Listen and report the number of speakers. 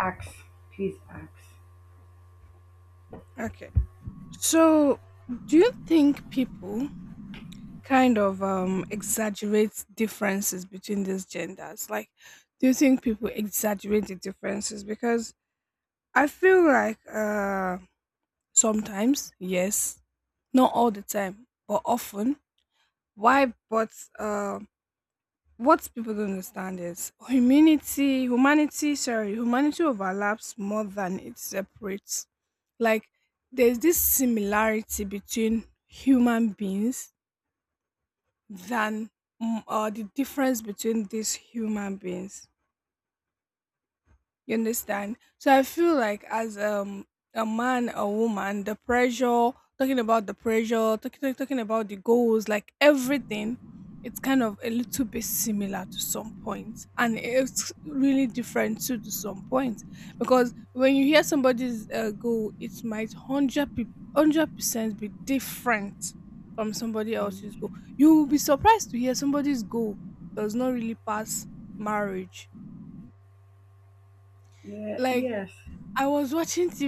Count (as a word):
two